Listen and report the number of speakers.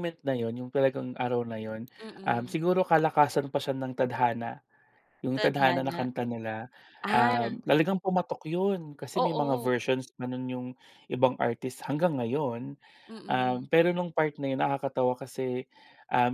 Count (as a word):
two